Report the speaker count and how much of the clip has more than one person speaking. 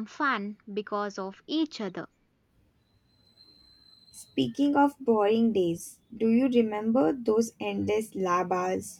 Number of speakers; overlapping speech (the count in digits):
2, no overlap